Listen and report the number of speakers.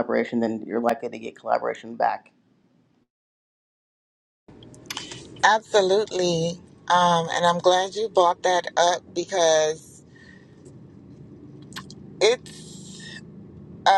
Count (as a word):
two